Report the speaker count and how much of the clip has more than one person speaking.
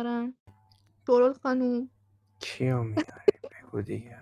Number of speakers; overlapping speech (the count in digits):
2, no overlap